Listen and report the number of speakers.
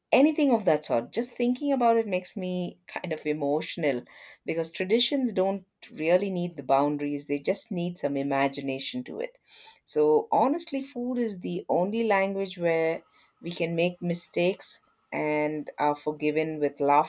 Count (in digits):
1